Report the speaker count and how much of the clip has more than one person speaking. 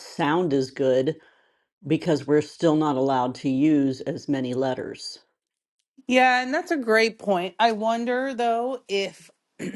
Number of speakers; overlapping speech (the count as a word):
two, no overlap